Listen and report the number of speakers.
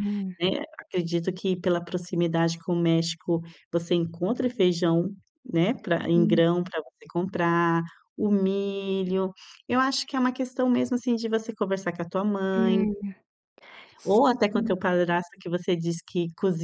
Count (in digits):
2